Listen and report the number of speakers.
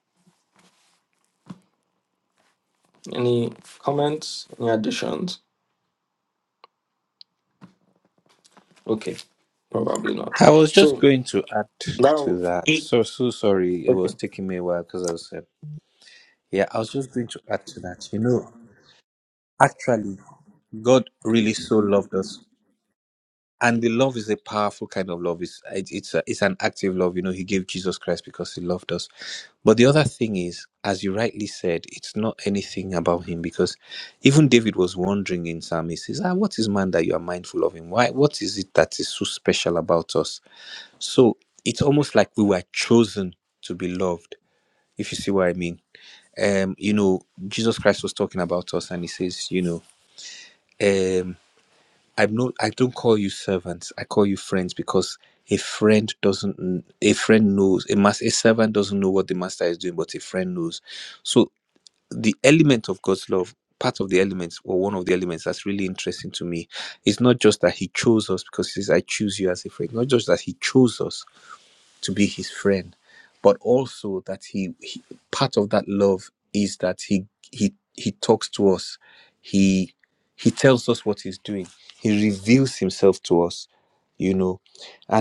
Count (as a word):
two